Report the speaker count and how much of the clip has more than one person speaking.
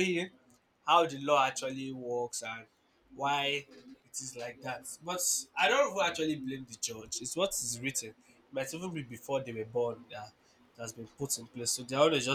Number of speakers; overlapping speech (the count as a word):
one, no overlap